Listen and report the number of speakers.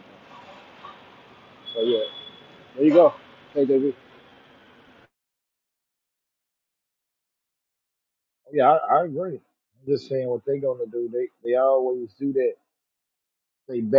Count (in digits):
2